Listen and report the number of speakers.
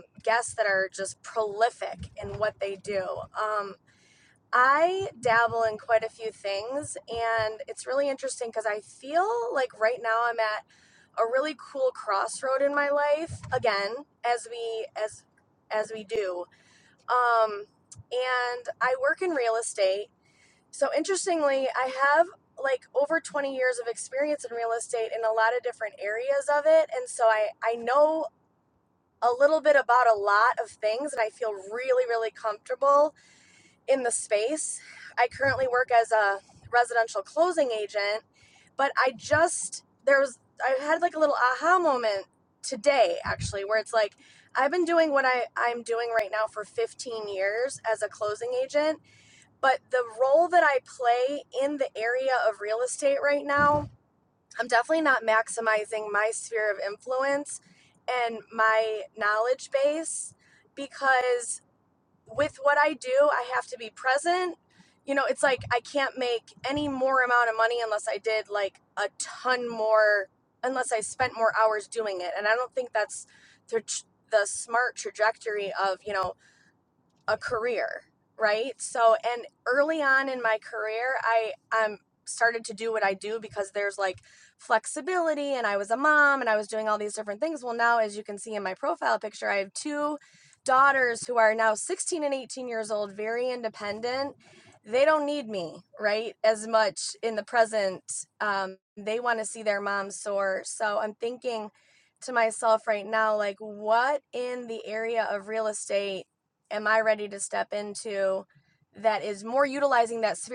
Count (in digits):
1